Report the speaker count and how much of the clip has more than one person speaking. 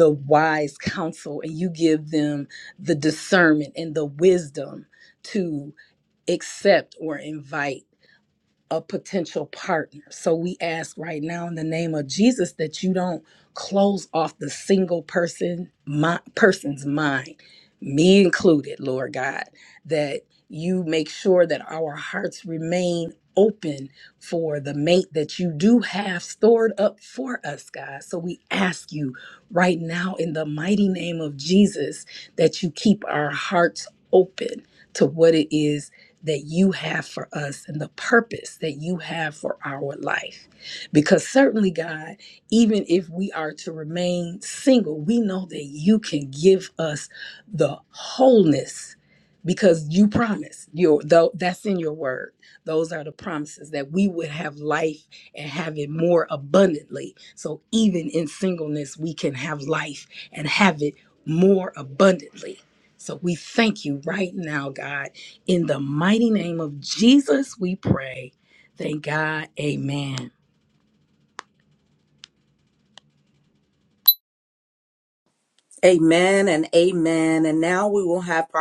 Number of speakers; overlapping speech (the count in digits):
2, no overlap